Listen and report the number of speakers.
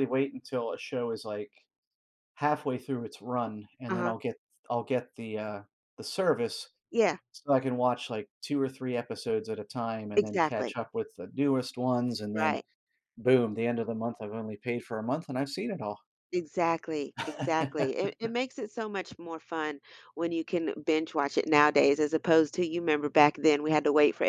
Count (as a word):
two